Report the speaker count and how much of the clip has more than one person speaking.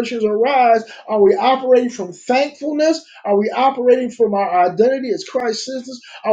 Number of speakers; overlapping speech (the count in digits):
1, no overlap